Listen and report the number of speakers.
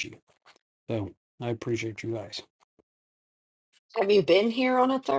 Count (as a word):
two